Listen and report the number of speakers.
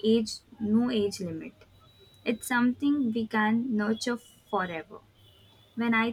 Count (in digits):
1